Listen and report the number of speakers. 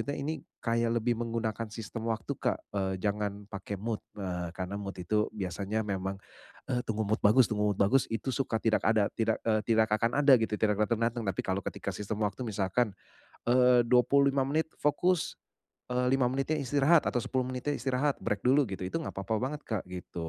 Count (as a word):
one